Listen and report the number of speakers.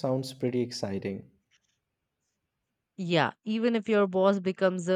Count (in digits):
2